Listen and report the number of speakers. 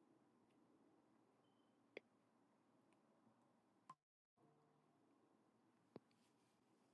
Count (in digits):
0